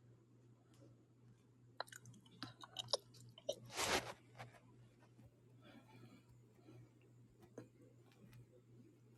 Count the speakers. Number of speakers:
zero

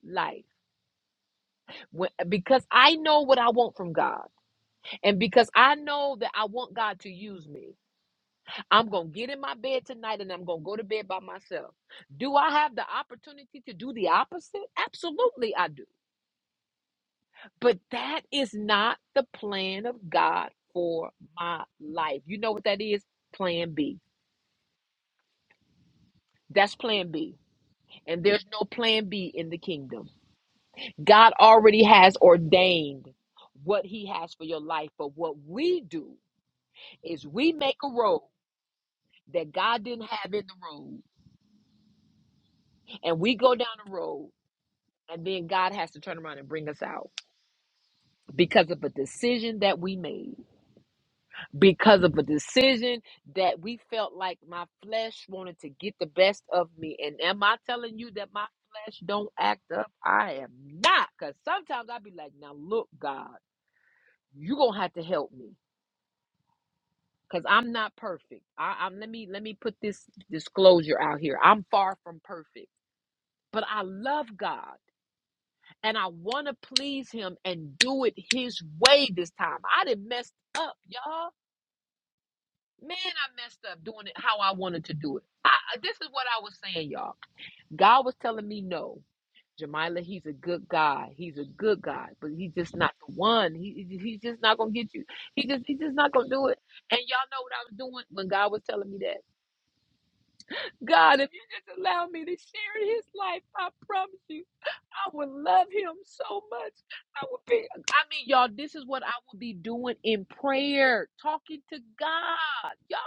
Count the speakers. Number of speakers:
one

